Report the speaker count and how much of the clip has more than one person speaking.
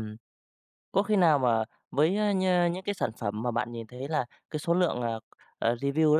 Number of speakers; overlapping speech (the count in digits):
1, no overlap